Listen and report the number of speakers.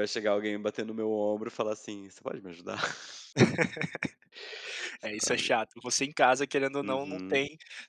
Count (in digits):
2